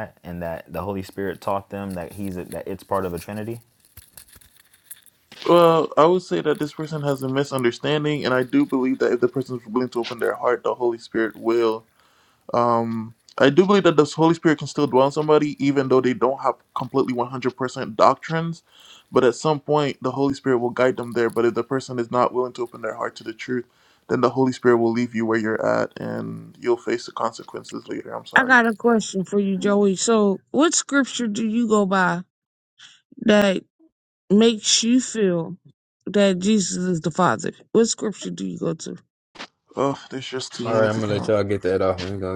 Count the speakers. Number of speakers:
4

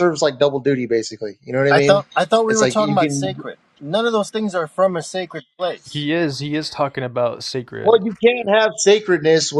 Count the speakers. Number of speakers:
3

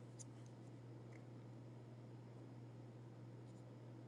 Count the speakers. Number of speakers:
0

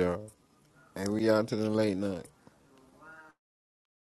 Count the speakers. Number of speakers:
1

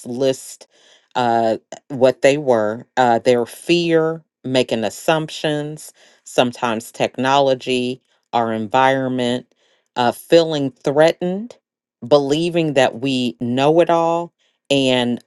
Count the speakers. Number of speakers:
1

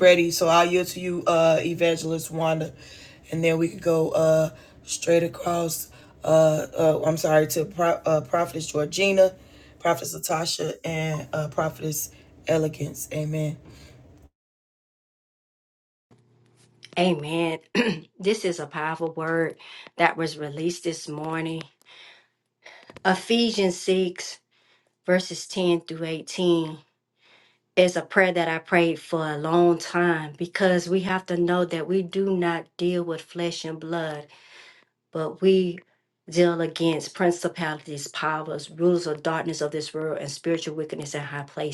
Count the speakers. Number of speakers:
2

